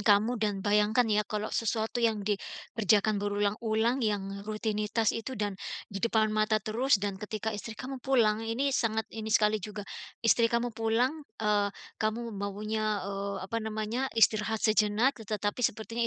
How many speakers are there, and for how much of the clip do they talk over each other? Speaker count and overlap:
1, no overlap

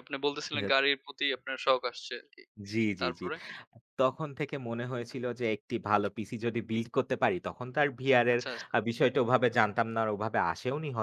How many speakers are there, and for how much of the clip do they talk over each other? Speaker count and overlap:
2, about 4%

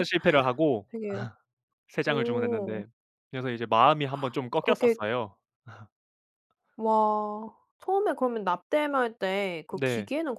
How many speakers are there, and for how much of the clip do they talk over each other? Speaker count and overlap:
2, about 14%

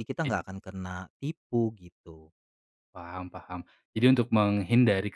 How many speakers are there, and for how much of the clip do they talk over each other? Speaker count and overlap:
2, about 2%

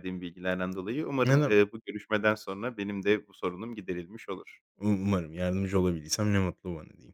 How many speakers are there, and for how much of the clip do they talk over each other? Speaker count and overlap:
2, about 4%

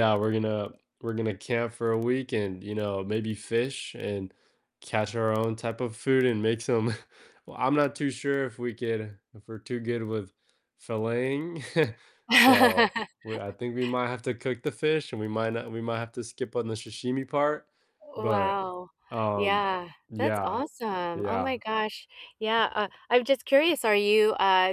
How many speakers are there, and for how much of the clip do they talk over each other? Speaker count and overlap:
2, about 6%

